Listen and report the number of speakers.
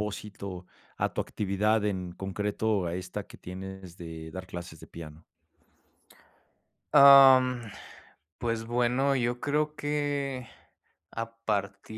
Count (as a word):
two